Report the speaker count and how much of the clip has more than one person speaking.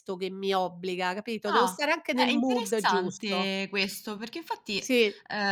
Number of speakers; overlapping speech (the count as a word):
two, about 29%